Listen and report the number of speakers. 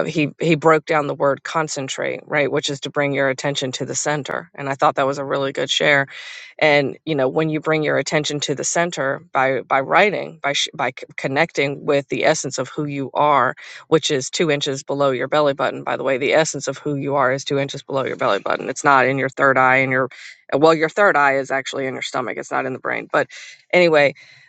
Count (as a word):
one